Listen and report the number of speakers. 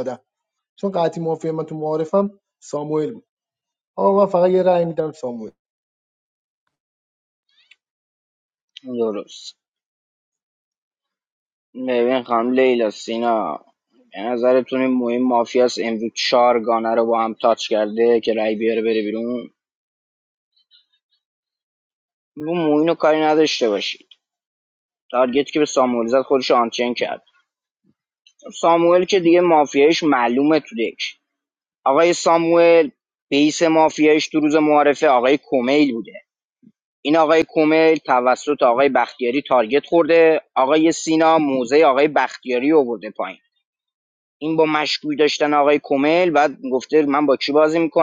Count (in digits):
2